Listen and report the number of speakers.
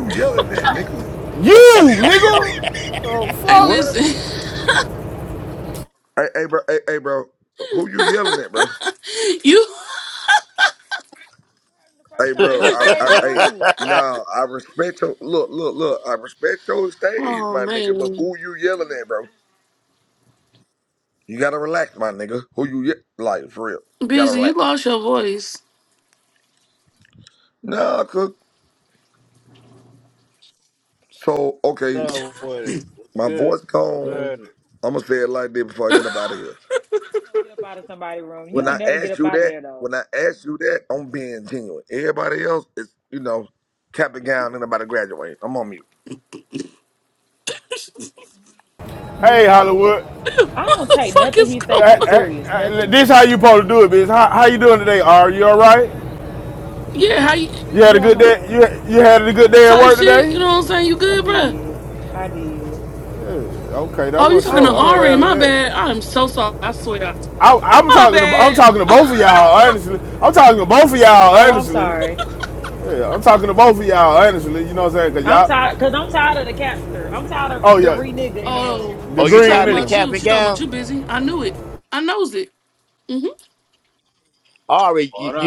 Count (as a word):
six